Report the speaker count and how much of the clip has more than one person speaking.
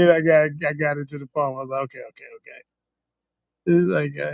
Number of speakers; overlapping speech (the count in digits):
1, no overlap